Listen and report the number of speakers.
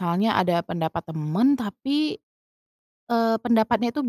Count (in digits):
1